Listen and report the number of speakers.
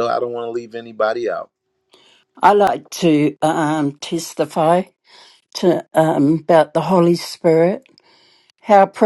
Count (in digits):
2